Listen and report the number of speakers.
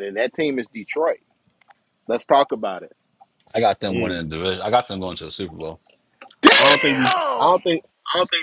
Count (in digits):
3